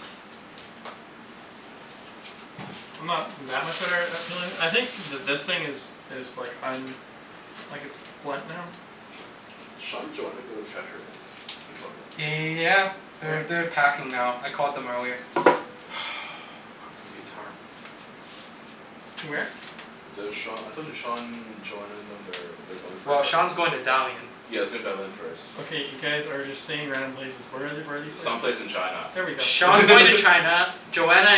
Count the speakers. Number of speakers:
3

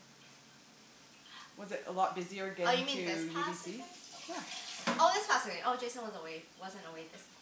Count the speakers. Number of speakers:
2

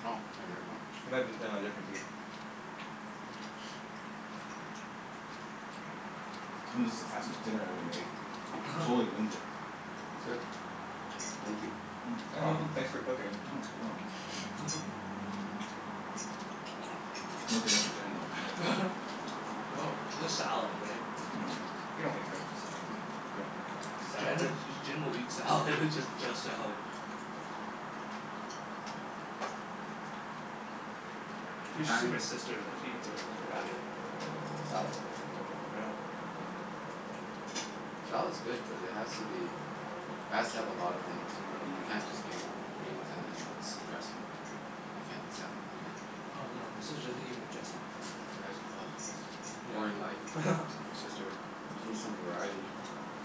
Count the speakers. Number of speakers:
4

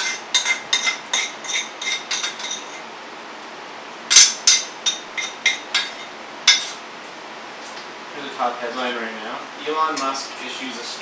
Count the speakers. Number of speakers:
1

